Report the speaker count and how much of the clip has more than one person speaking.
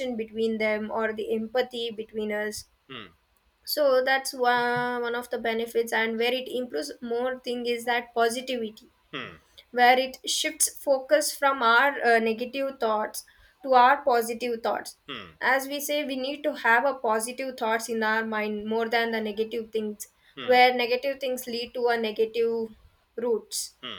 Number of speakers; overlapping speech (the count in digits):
2, about 1%